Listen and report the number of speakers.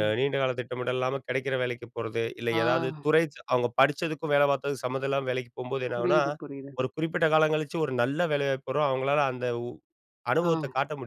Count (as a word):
two